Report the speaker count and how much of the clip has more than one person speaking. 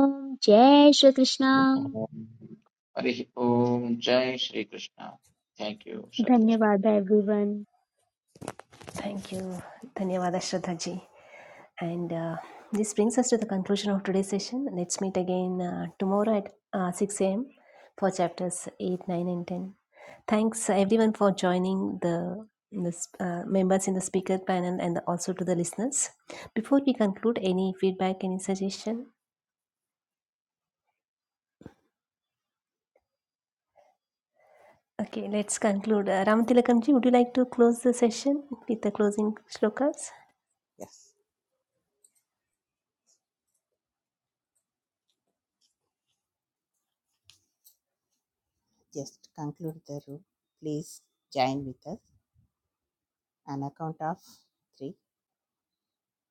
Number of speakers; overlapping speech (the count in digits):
4, about 1%